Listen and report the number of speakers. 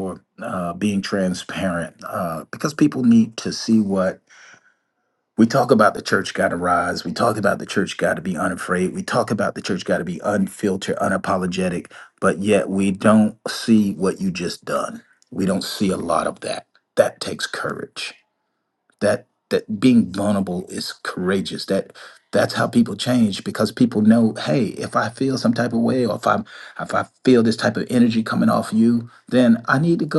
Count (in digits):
1